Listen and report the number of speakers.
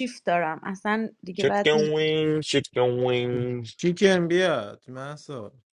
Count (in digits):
3